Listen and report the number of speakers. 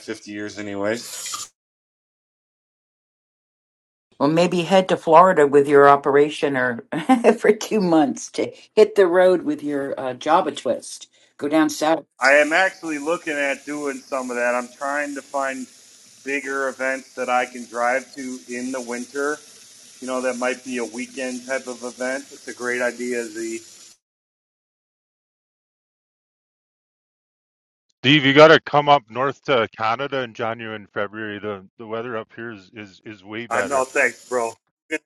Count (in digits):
3